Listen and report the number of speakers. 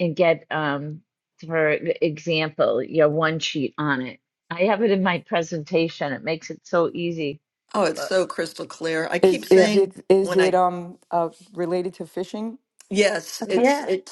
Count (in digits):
3